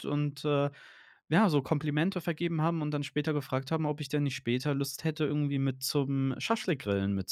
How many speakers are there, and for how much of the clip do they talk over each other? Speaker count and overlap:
1, no overlap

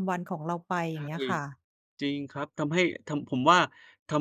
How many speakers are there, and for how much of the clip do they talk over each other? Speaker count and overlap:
2, about 2%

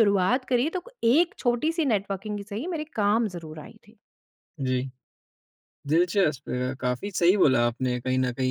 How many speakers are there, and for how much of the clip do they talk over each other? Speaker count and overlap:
2, no overlap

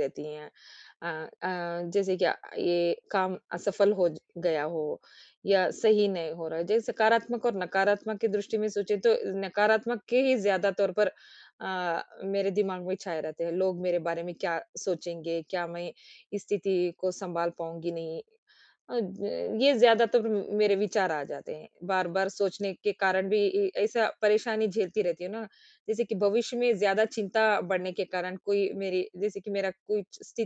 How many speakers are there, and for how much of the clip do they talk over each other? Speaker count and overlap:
1, no overlap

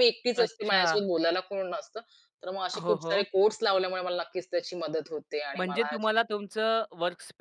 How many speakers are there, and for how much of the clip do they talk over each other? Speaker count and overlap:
2, about 22%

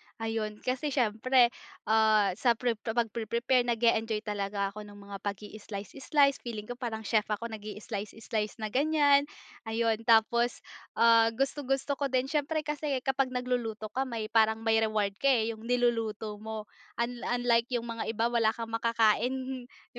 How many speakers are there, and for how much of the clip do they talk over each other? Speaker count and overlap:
1, no overlap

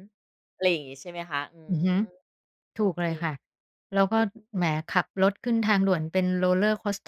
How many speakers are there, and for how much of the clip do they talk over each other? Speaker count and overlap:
2, about 7%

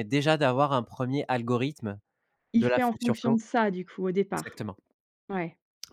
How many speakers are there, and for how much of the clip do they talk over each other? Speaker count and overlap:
2, about 16%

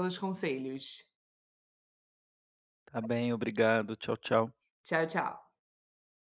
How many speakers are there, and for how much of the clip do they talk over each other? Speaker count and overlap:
2, no overlap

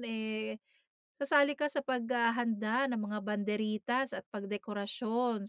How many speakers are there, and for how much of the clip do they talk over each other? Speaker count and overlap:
1, no overlap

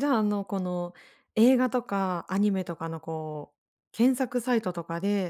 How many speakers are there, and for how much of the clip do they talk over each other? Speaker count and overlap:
1, no overlap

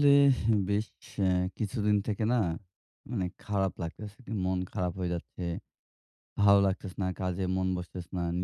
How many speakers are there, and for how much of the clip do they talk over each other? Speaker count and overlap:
1, no overlap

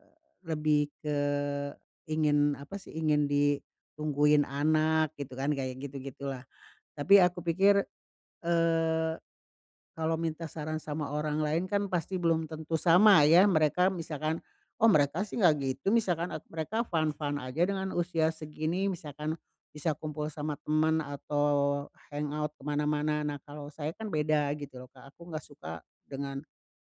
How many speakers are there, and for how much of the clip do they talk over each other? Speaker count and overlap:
1, no overlap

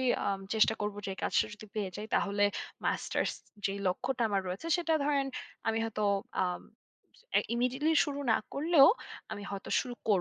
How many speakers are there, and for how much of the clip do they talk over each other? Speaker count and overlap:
1, no overlap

